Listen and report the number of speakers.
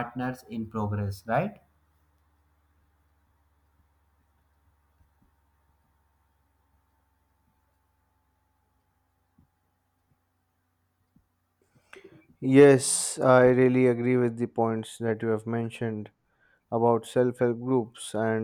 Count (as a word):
two